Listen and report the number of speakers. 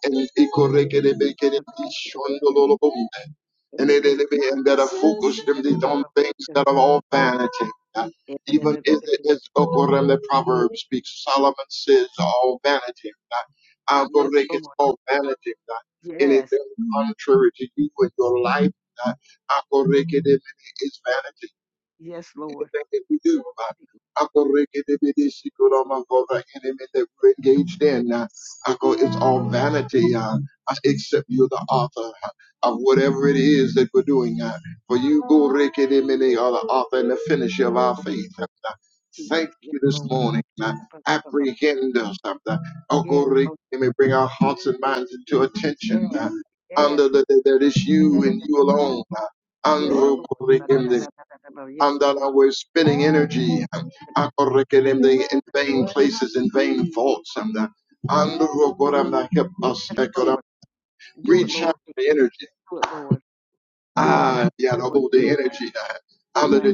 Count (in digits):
2